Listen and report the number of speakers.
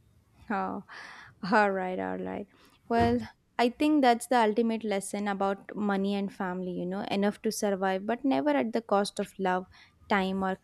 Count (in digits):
1